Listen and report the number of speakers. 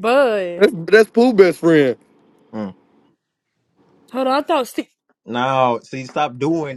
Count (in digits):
3